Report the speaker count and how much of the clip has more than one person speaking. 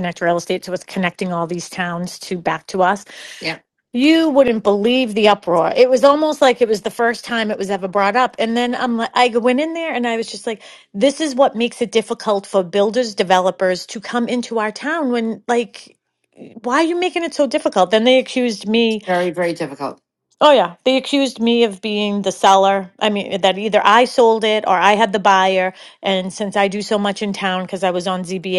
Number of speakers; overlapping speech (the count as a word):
two, no overlap